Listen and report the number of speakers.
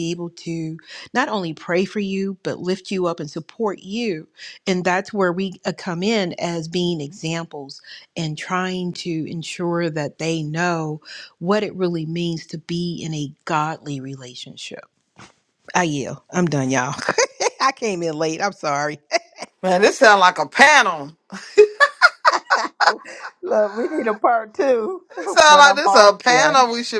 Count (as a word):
three